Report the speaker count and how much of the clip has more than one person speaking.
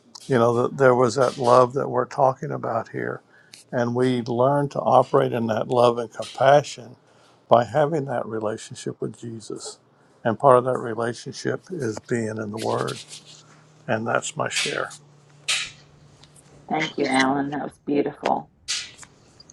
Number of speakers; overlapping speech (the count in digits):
2, no overlap